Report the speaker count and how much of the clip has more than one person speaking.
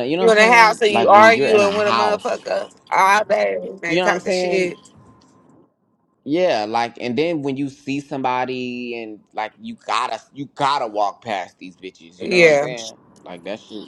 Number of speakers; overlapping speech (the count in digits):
2, about 26%